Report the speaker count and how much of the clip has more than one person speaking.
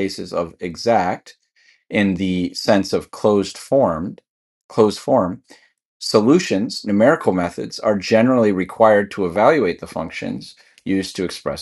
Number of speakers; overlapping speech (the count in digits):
1, no overlap